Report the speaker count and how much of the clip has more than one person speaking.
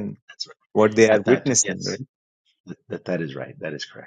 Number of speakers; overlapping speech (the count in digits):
2, about 16%